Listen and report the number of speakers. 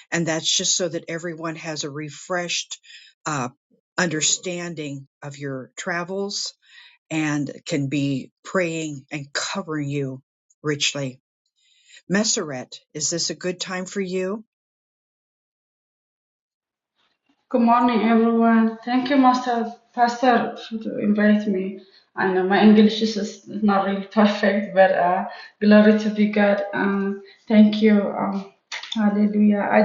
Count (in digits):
2